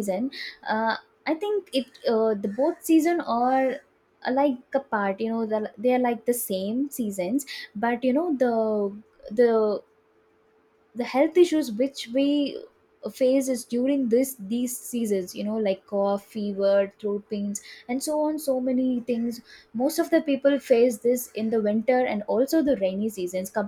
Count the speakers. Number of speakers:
one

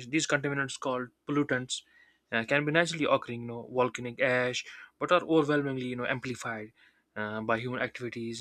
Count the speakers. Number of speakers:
one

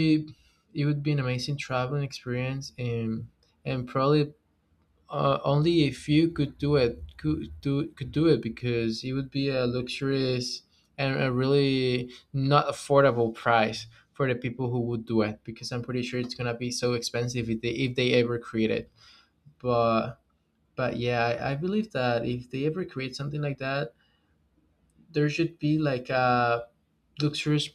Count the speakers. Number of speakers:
one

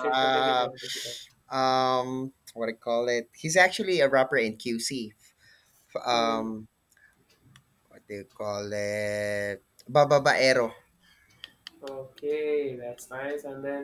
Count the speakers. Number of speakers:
two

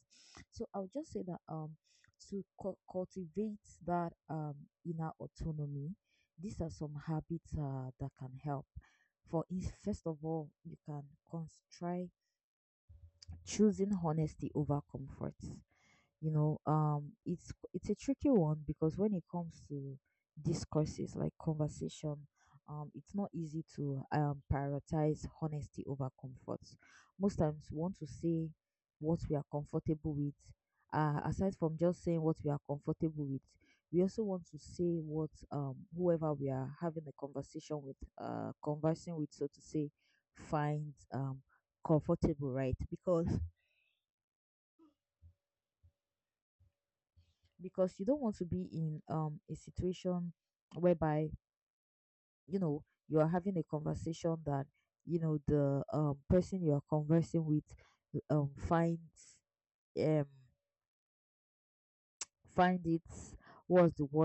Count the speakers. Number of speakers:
one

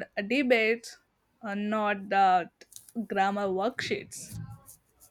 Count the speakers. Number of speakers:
one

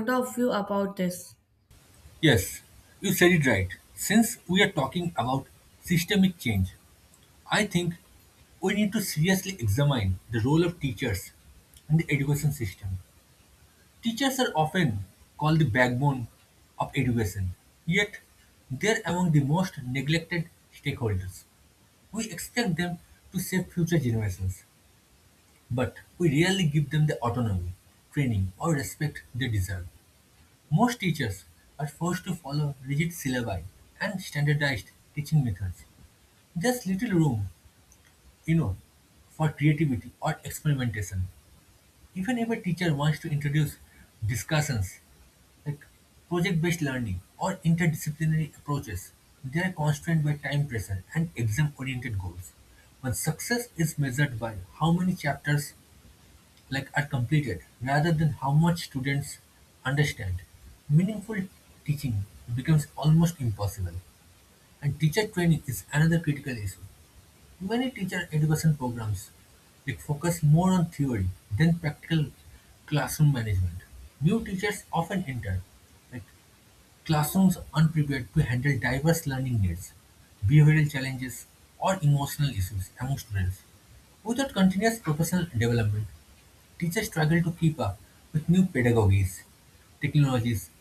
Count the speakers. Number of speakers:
two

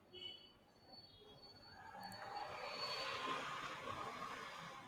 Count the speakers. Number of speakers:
zero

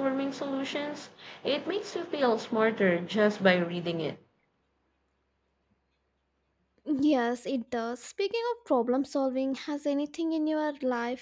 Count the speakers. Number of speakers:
two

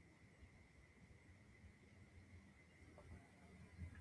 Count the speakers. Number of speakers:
zero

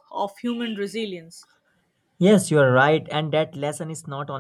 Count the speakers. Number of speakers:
two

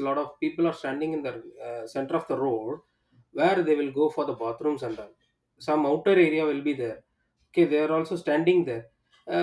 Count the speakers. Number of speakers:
one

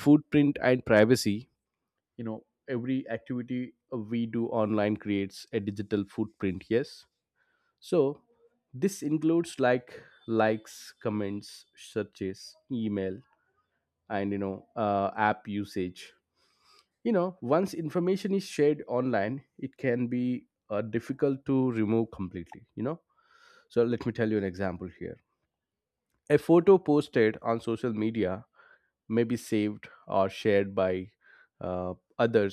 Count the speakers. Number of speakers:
one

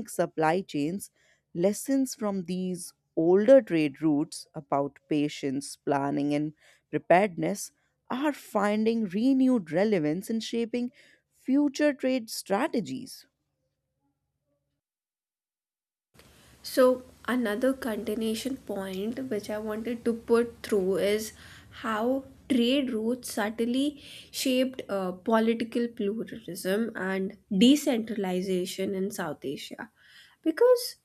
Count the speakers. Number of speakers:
two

